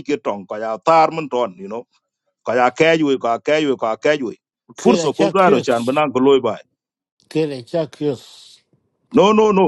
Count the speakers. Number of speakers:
two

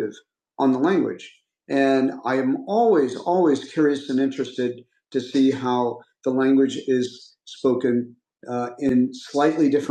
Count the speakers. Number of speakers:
one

